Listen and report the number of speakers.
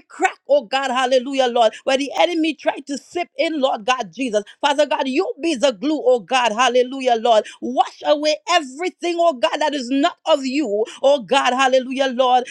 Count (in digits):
1